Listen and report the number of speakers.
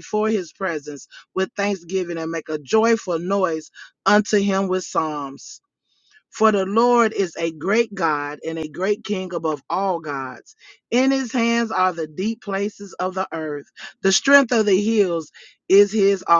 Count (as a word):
one